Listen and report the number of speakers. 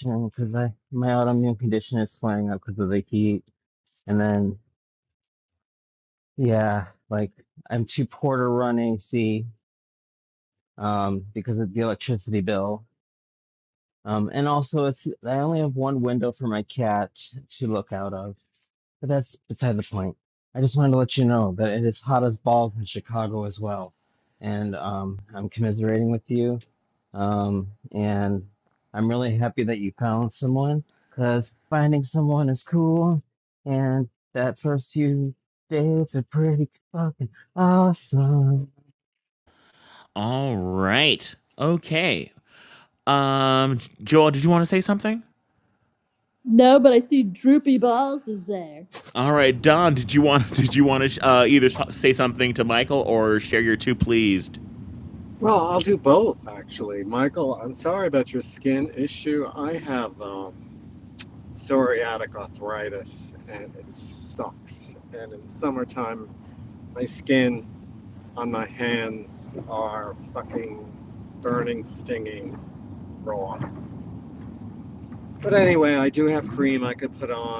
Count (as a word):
four